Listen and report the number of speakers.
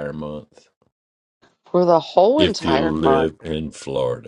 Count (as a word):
two